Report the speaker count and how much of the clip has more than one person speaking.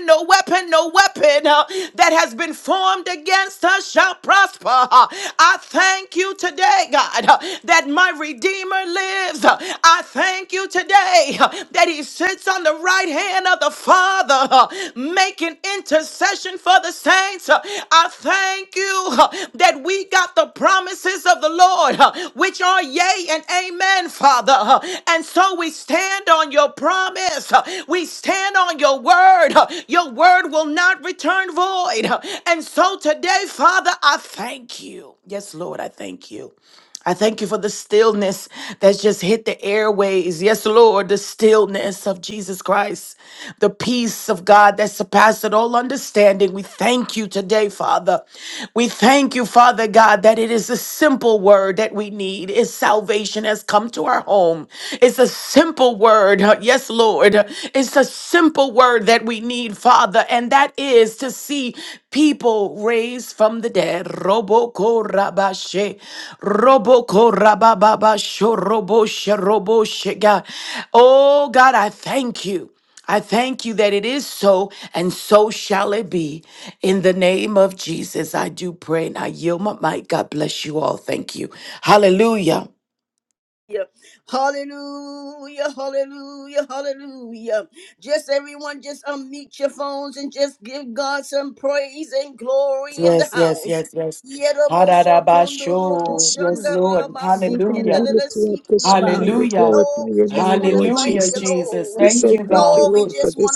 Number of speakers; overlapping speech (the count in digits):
3, about 8%